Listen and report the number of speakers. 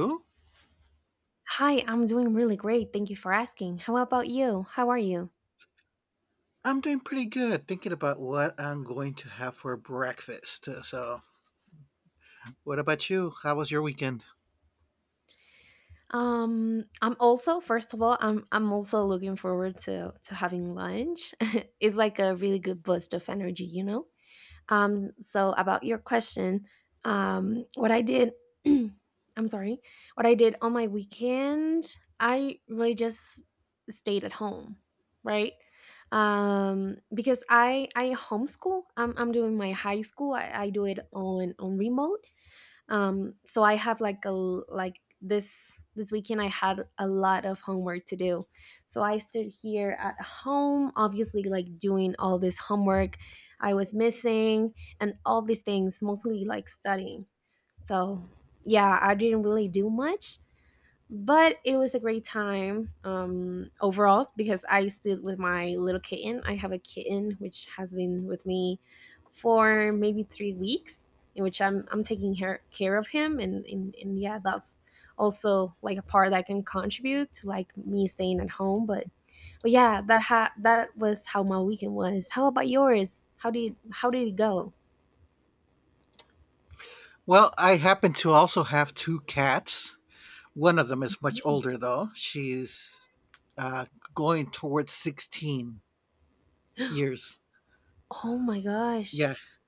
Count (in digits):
2